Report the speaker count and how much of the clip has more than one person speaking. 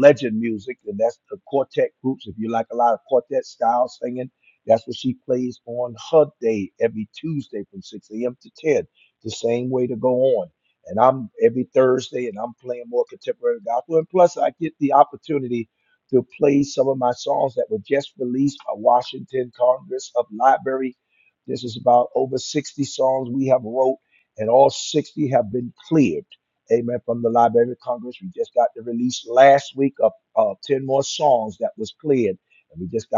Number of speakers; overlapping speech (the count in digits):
1, no overlap